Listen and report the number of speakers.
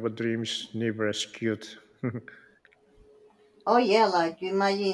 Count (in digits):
2